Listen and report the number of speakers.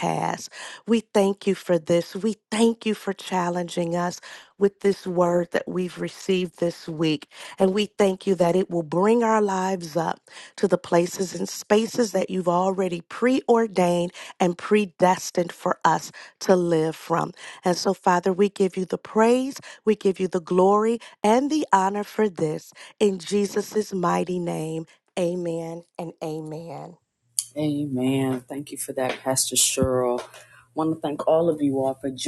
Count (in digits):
2